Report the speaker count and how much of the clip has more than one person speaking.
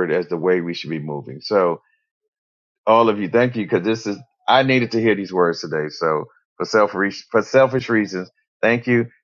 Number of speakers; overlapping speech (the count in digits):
1, no overlap